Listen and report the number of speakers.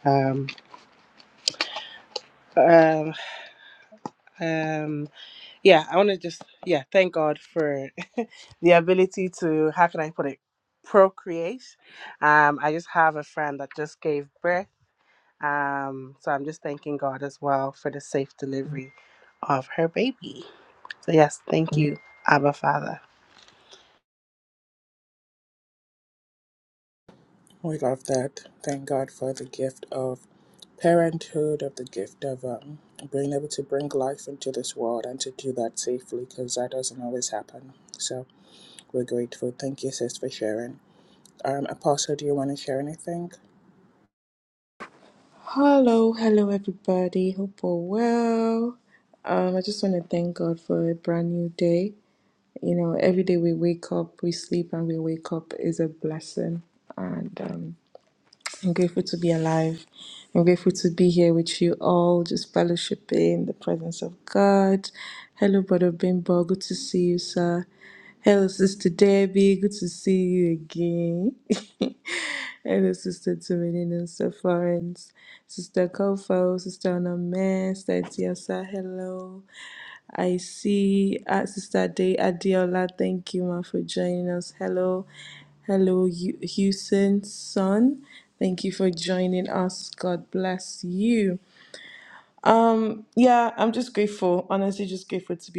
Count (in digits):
3